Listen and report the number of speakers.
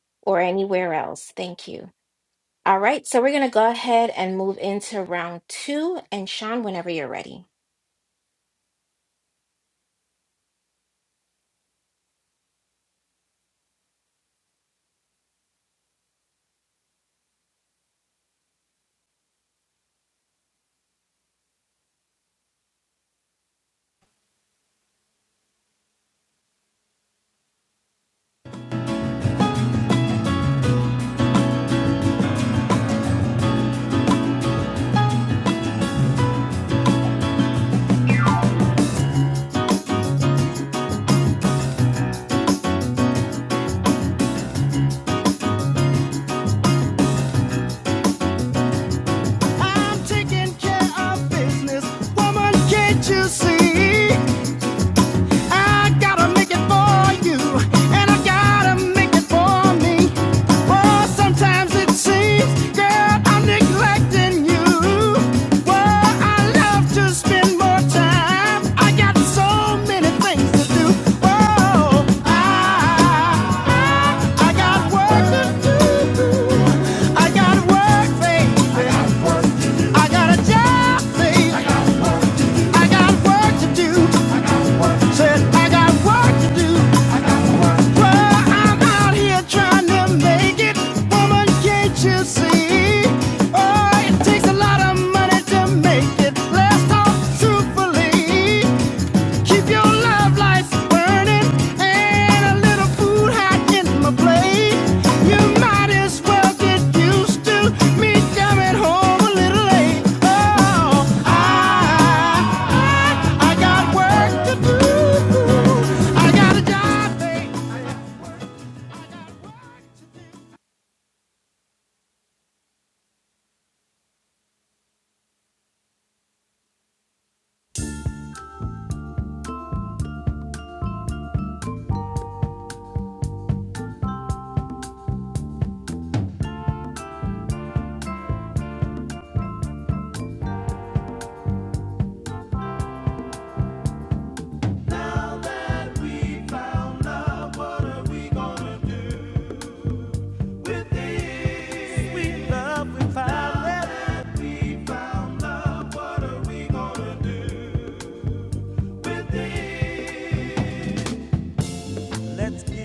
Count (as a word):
three